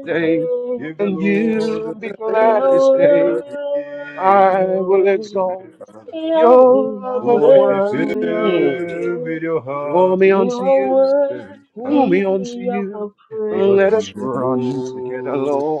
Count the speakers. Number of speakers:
three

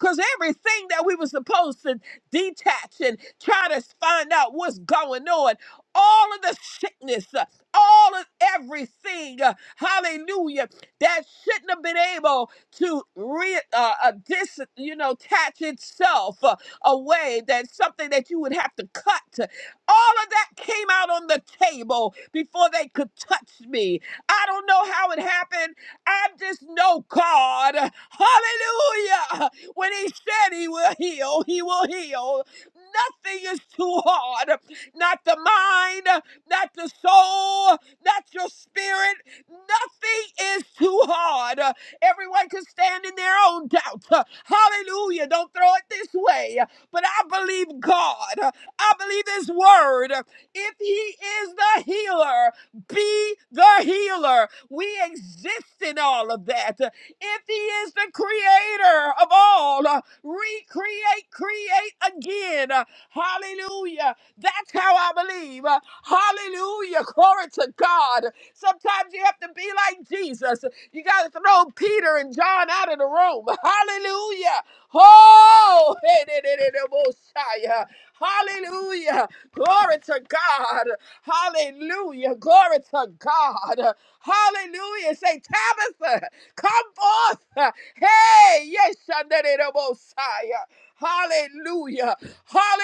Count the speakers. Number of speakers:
one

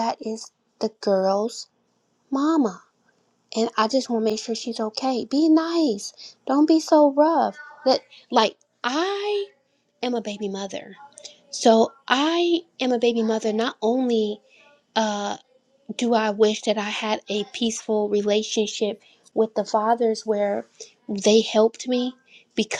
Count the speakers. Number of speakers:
one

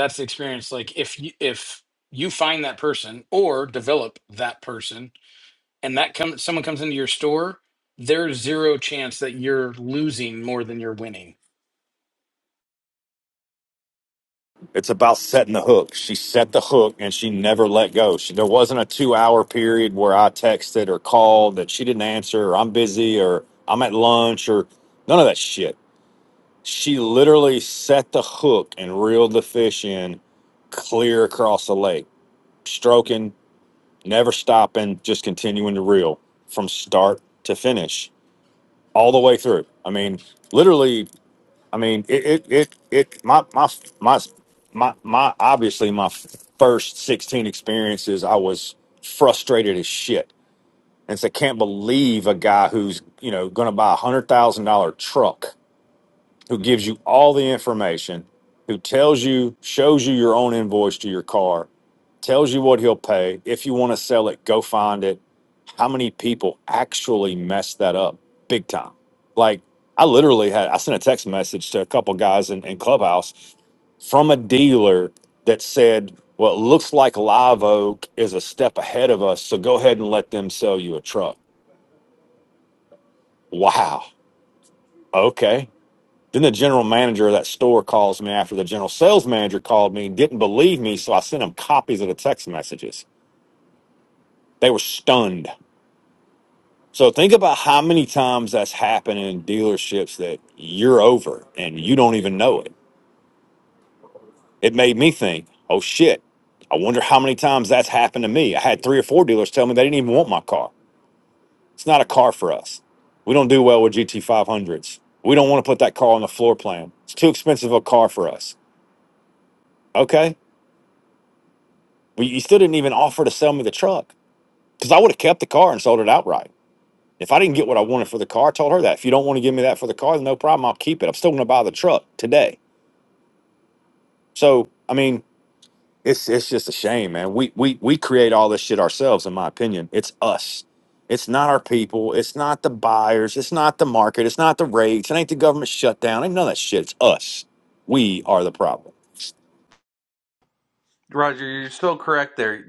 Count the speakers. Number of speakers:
three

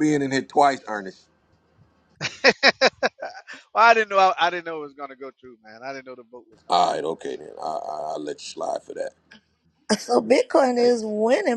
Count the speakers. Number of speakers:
three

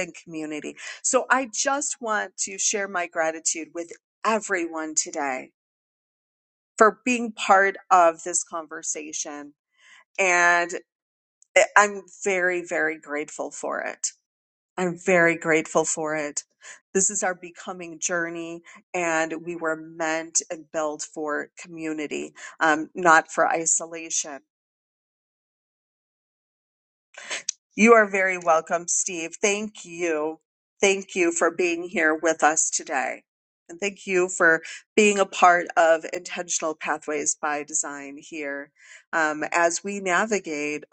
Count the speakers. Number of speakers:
one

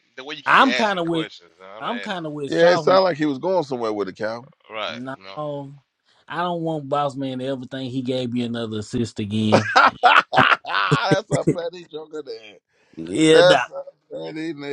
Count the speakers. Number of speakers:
three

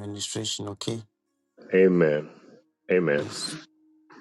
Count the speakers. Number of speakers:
two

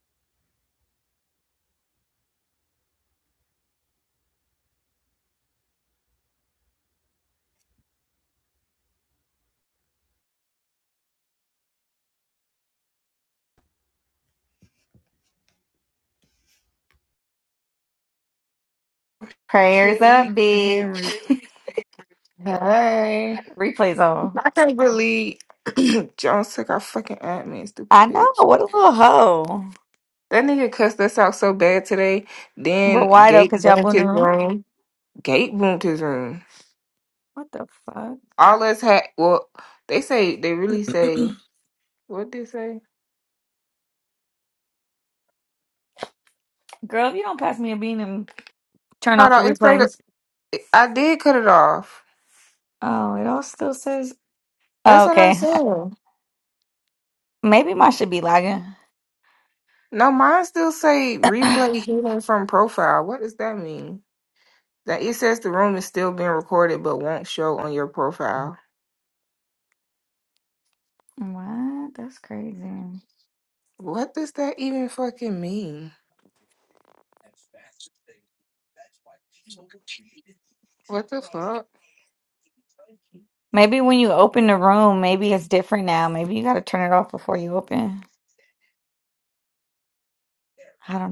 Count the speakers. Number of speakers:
two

